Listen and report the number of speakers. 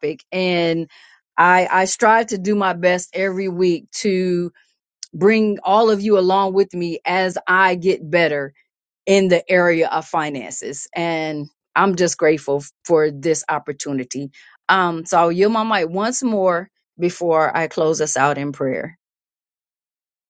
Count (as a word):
one